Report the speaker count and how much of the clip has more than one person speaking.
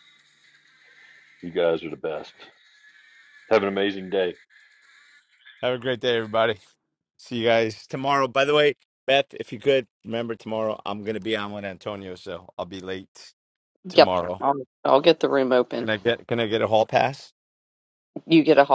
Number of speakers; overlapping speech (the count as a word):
three, about 1%